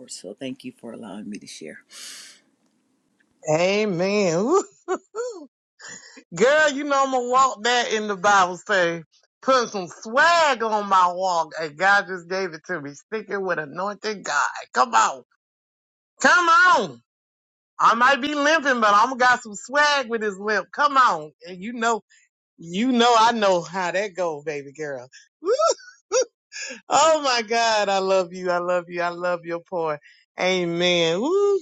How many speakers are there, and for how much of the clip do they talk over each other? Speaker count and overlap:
two, no overlap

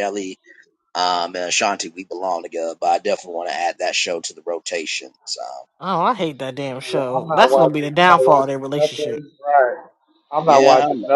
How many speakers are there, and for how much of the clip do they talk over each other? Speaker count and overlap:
three, about 24%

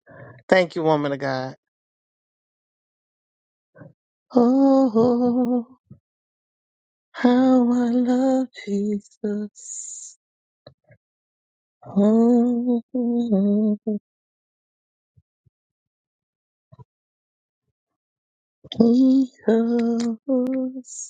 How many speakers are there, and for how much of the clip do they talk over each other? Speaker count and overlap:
one, no overlap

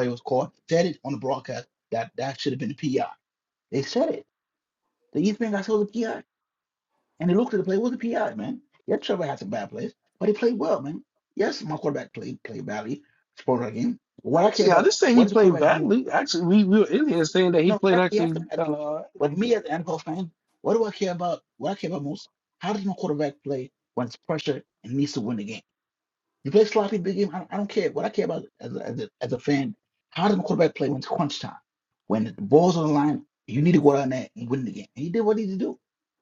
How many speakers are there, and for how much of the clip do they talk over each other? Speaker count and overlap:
two, about 7%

